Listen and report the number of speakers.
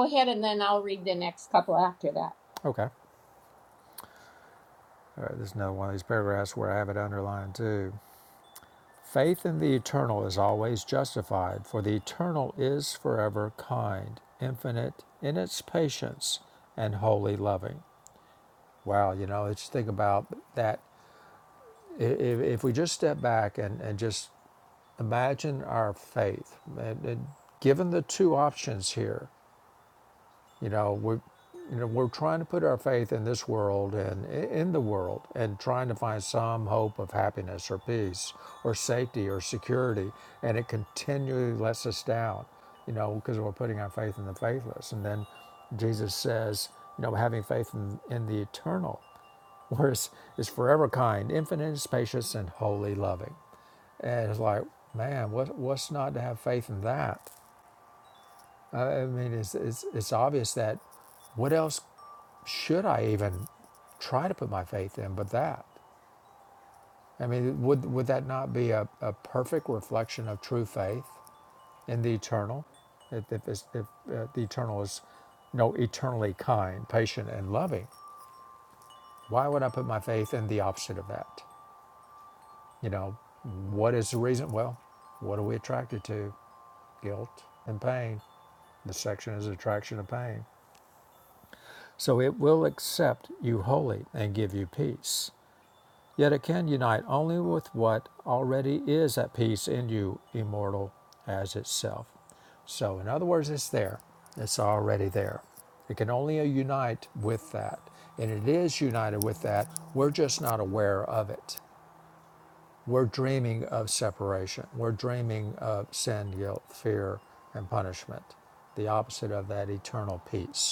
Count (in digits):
2